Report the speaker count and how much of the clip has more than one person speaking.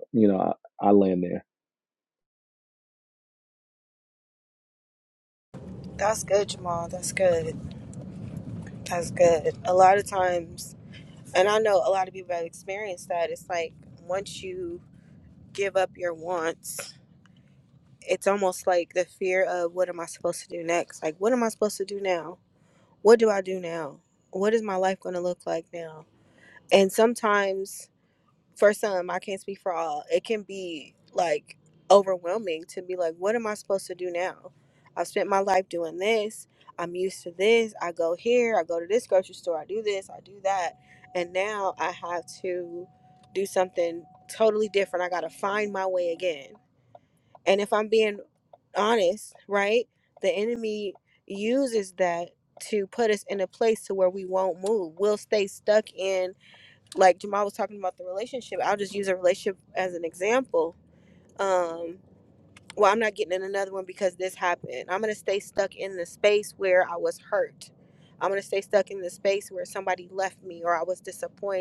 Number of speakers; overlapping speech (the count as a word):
two, no overlap